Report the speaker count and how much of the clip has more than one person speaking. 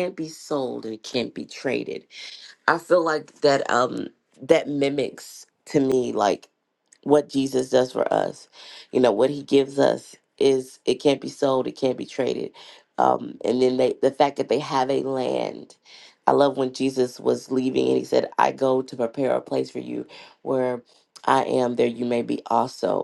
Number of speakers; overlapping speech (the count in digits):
1, no overlap